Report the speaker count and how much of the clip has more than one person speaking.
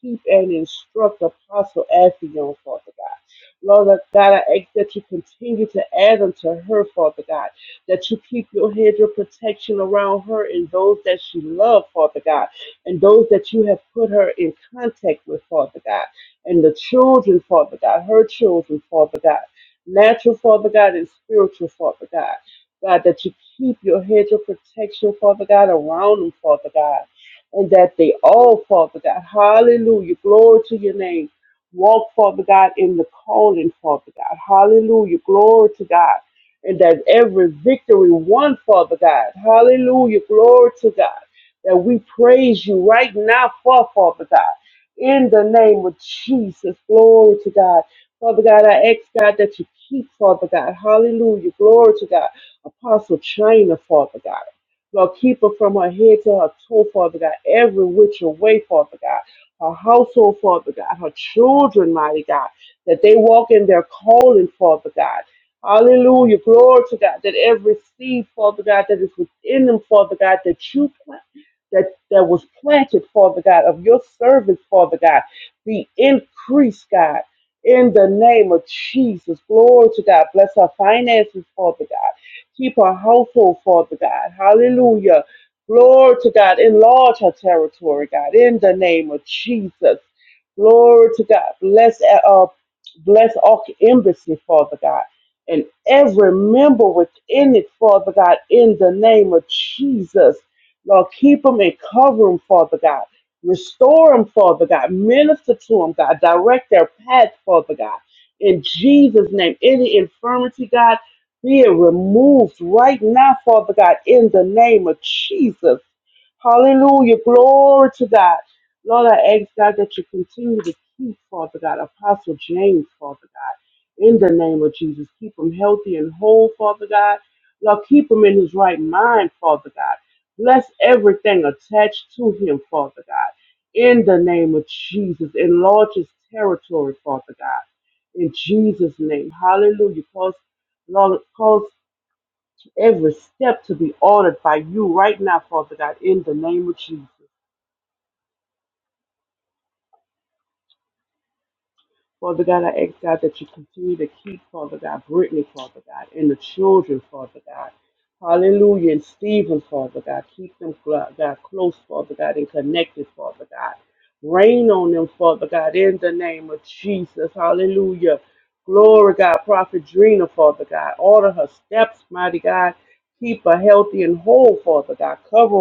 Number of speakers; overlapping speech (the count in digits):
1, no overlap